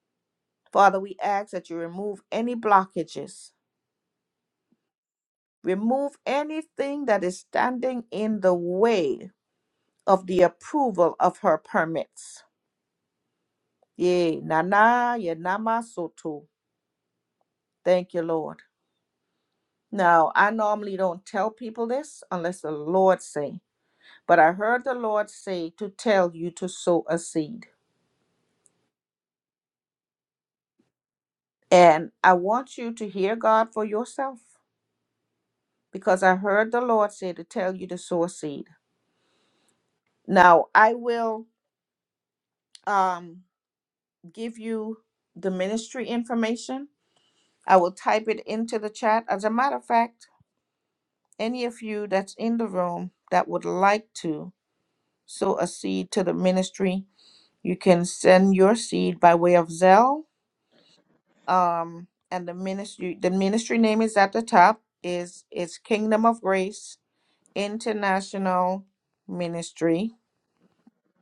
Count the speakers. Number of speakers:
1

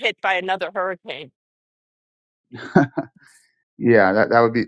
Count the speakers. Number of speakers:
2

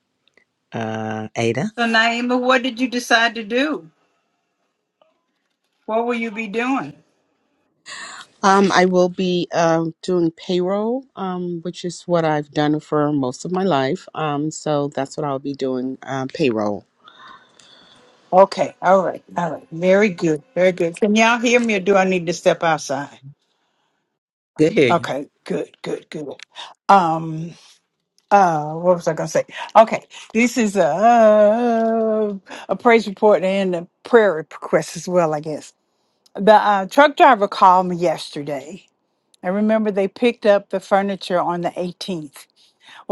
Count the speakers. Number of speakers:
3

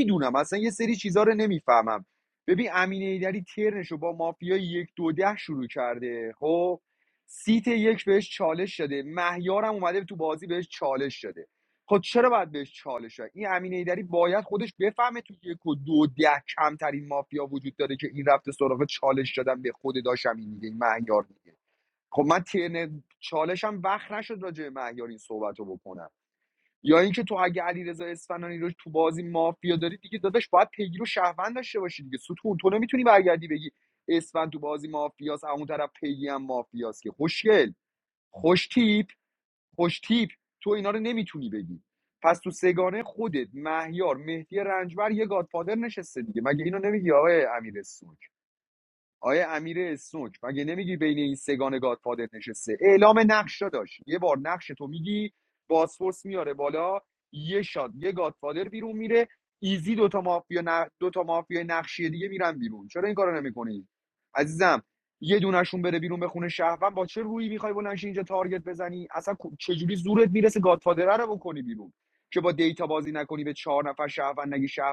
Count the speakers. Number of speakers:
1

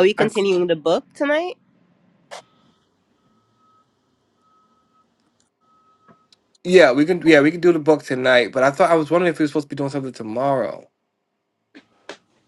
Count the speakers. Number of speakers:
2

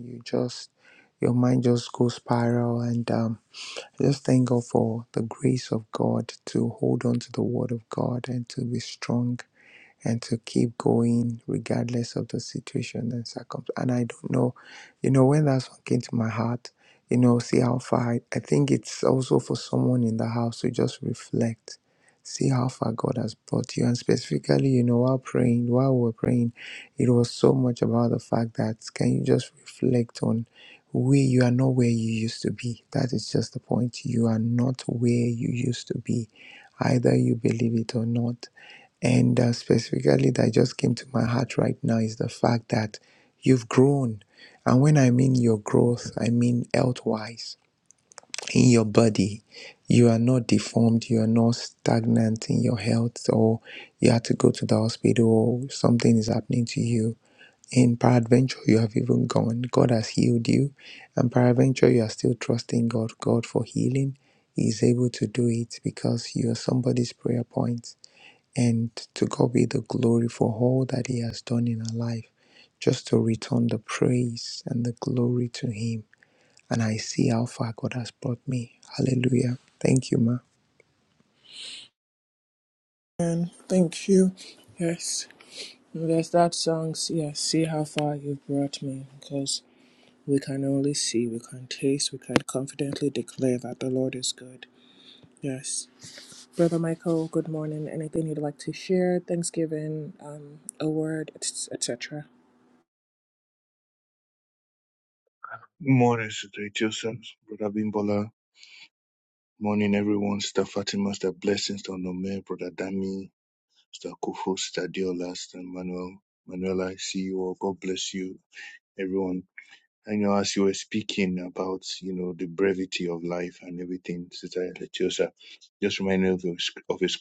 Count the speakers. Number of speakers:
3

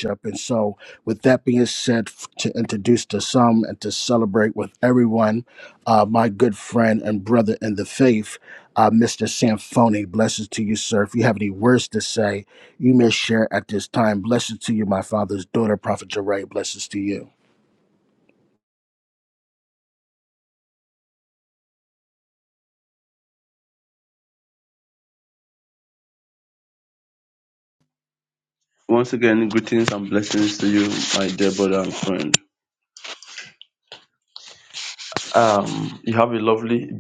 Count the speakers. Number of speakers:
2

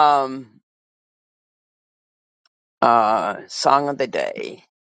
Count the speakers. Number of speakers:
1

